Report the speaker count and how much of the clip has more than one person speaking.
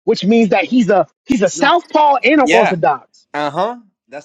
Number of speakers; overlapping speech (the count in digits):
2, about 12%